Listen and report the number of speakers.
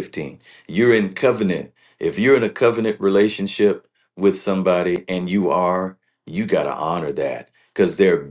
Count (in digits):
1